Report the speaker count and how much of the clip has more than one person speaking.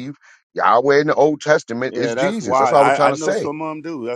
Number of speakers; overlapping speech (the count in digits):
2, about 38%